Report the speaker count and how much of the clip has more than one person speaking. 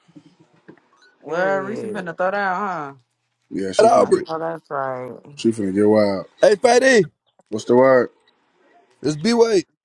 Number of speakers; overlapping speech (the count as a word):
four, about 12%